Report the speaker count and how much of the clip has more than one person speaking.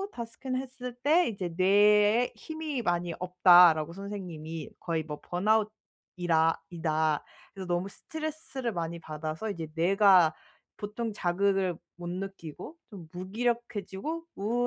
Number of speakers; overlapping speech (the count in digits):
1, no overlap